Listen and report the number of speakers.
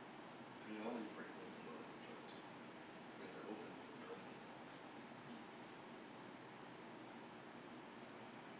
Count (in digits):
1